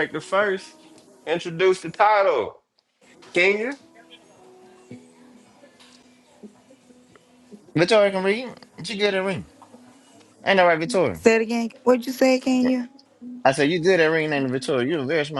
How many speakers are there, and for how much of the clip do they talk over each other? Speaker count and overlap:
three, no overlap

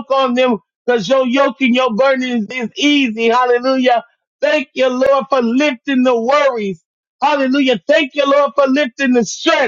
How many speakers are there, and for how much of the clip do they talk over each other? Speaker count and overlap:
one, no overlap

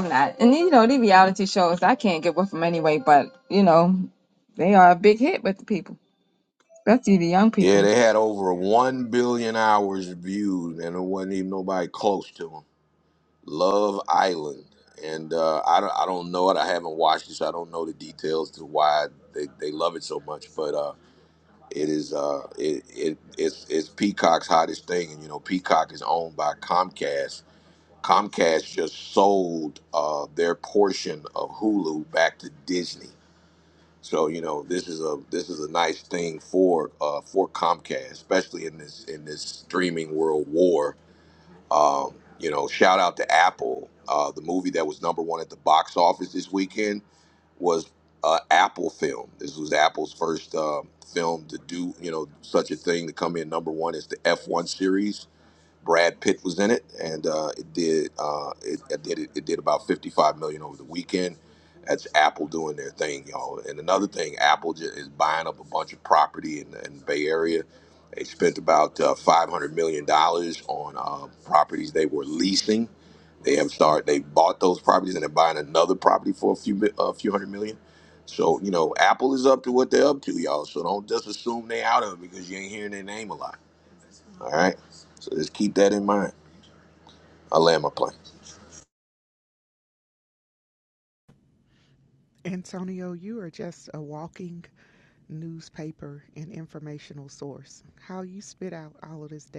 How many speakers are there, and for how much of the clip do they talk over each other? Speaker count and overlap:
three, under 1%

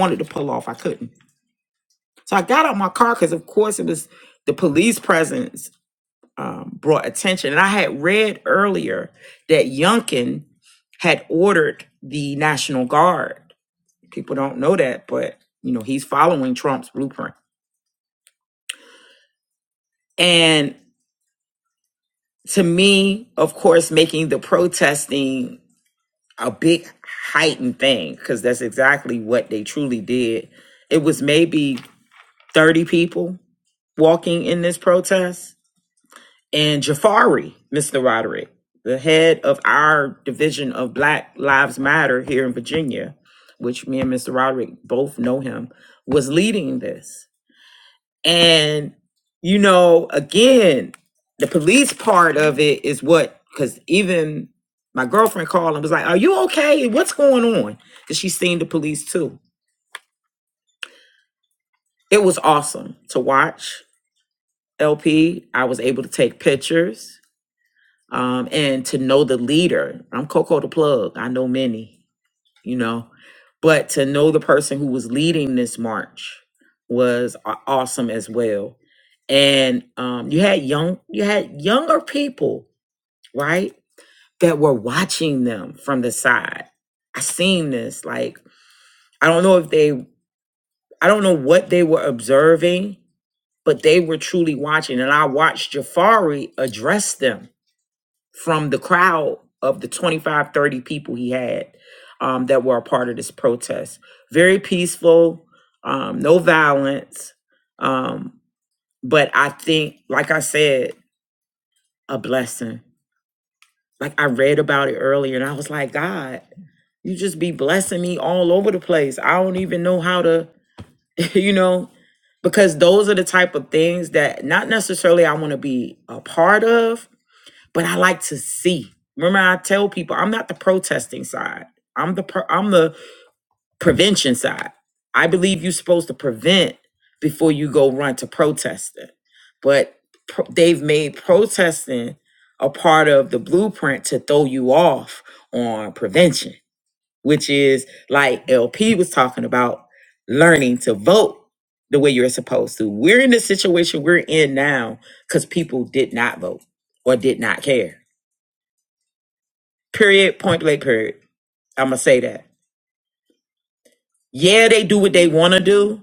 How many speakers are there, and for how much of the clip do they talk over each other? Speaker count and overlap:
one, no overlap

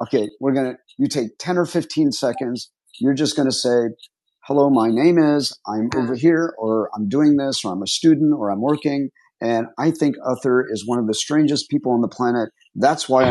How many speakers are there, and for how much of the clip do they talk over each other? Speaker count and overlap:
one, no overlap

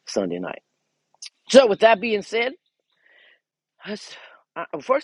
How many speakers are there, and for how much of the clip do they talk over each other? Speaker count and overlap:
one, no overlap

